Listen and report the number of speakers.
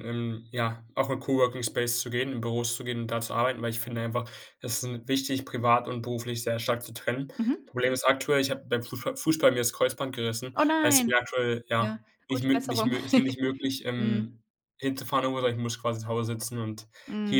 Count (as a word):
two